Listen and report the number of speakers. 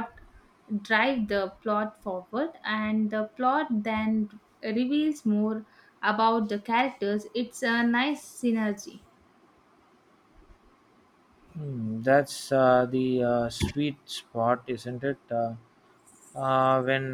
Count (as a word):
two